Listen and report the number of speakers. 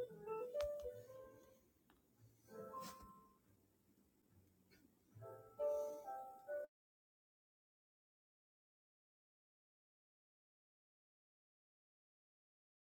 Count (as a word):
zero